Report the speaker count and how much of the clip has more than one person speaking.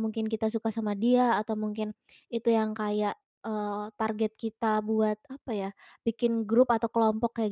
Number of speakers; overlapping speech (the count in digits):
1, no overlap